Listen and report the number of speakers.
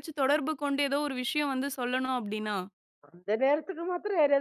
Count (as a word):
two